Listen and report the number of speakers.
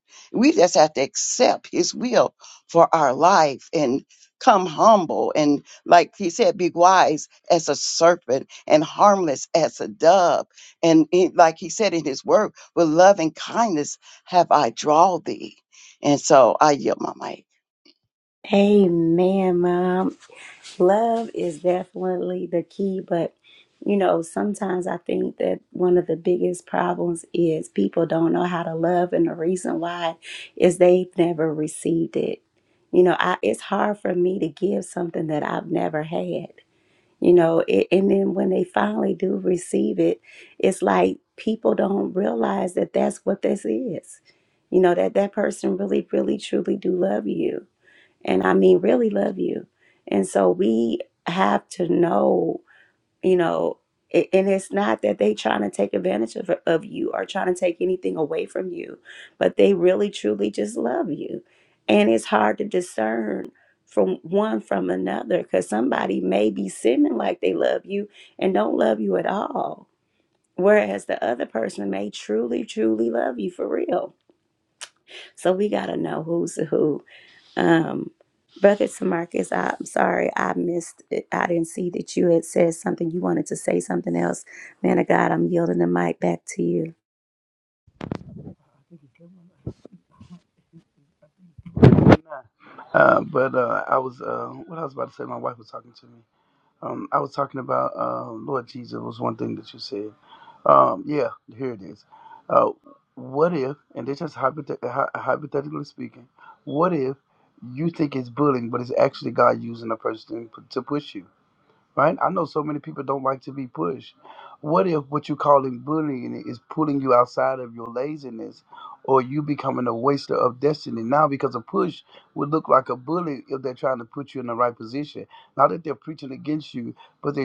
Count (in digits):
3